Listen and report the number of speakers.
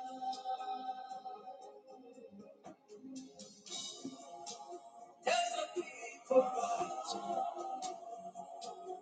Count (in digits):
0